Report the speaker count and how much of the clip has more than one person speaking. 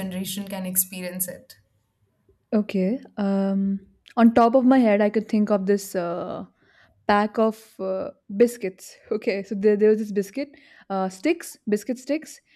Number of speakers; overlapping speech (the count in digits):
2, no overlap